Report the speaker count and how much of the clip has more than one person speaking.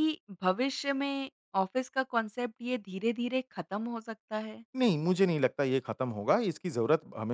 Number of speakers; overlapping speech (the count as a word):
two, no overlap